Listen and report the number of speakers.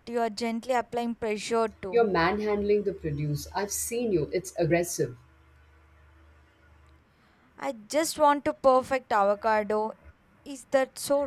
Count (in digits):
2